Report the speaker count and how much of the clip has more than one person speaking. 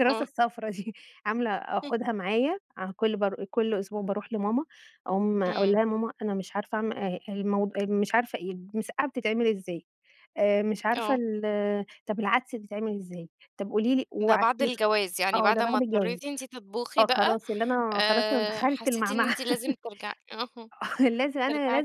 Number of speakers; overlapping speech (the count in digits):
2, about 20%